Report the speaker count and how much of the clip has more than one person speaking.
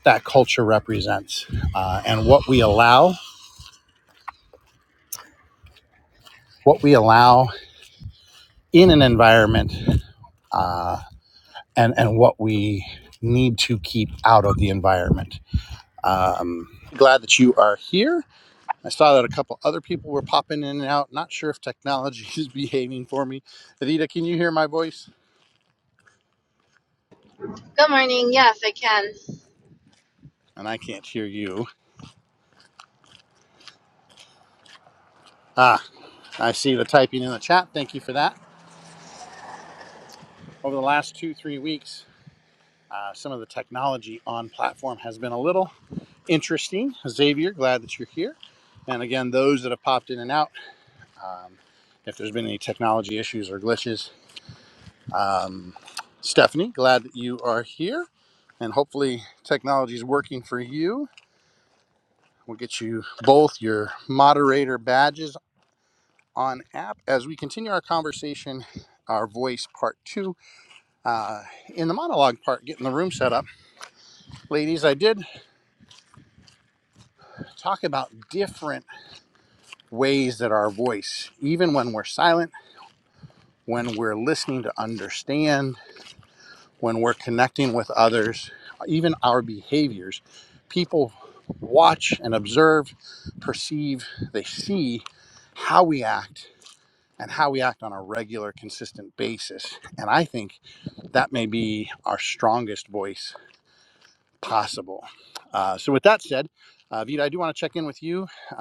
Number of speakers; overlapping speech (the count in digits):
2, no overlap